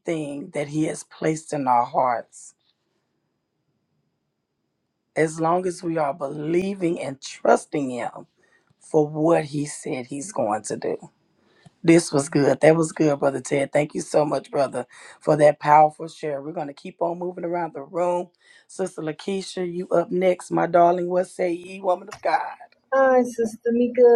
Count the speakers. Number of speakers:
2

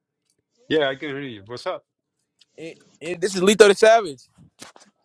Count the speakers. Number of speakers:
2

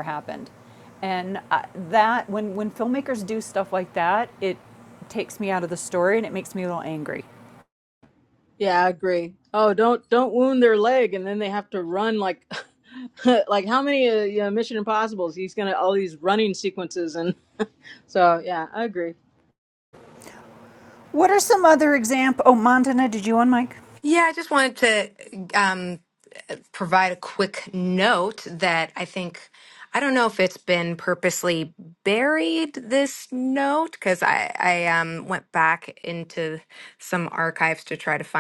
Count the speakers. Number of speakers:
3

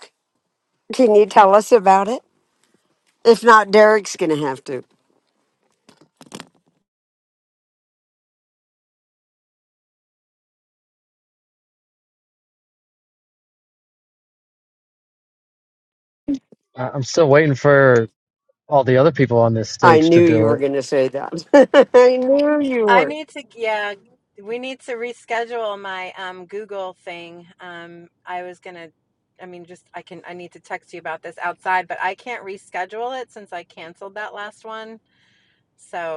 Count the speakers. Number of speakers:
3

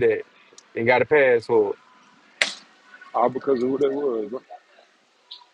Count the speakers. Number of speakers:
2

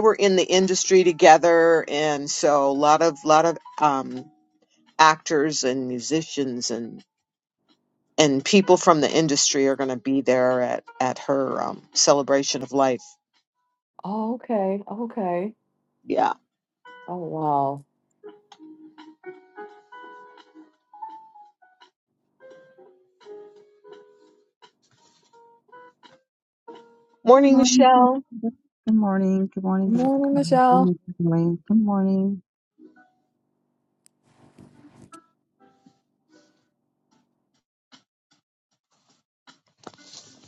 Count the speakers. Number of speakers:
3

